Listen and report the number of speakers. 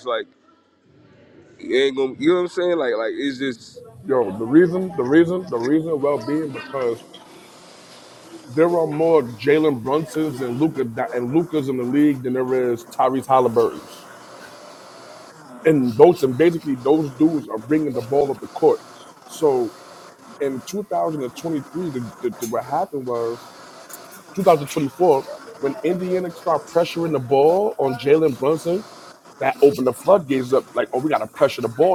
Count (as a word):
two